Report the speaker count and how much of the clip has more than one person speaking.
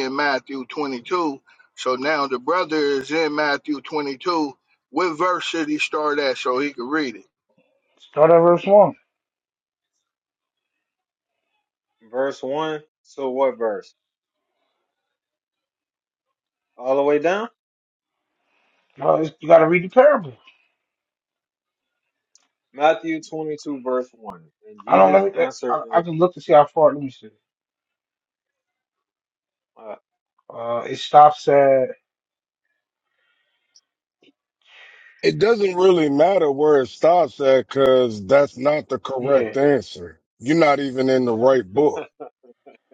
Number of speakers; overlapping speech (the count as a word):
four, about 3%